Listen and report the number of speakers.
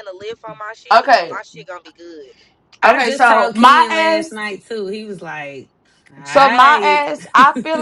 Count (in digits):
3